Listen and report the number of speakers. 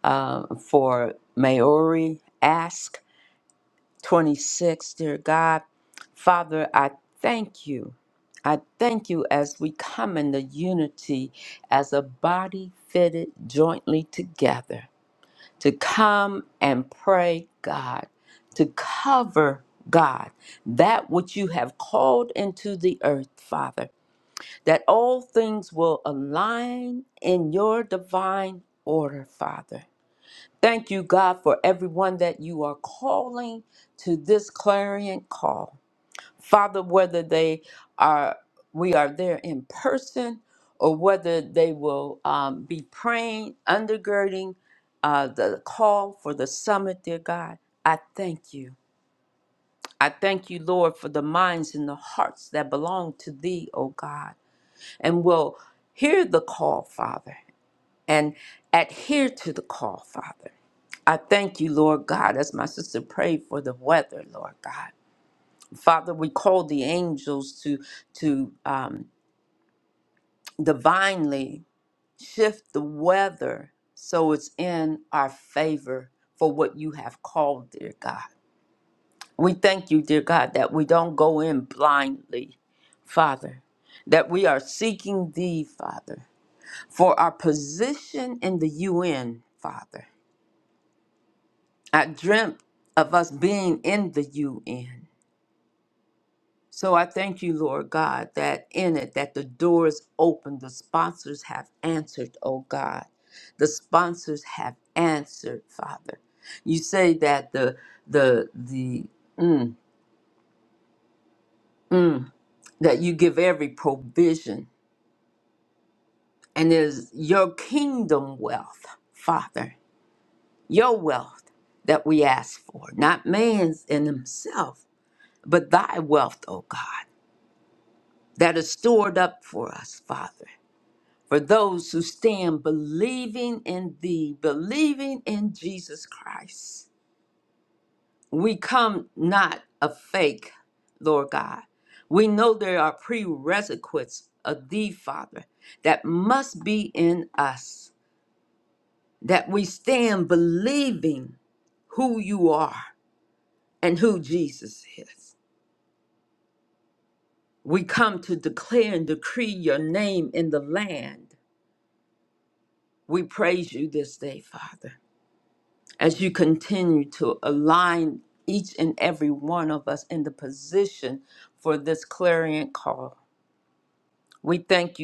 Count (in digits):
1